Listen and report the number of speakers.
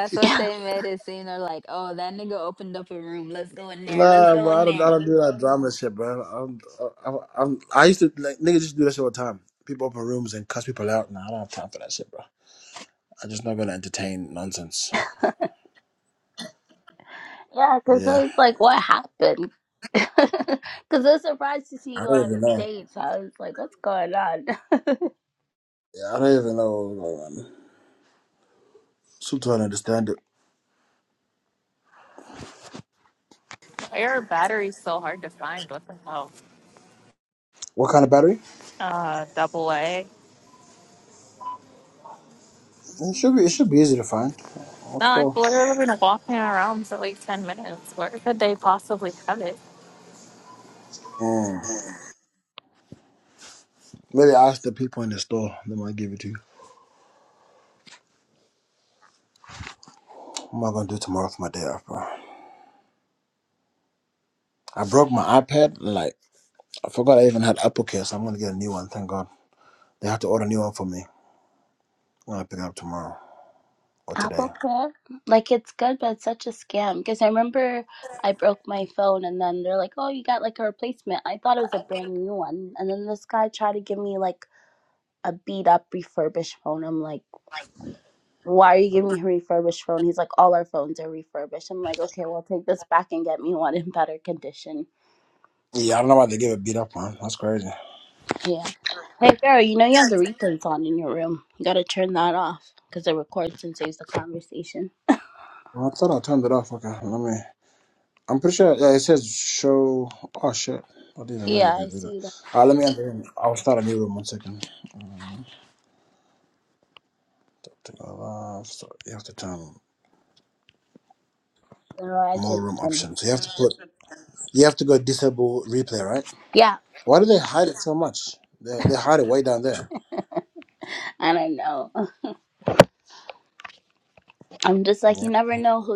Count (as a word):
four